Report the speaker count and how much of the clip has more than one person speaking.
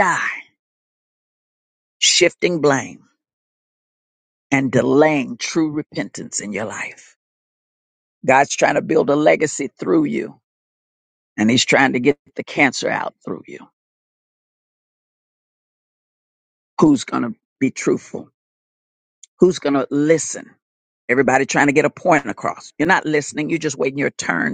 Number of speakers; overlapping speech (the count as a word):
one, no overlap